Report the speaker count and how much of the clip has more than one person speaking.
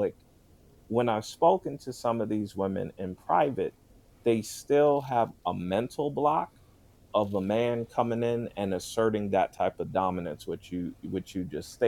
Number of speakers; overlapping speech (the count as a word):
one, no overlap